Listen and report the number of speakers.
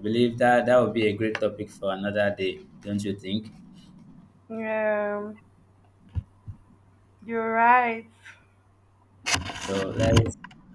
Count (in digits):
2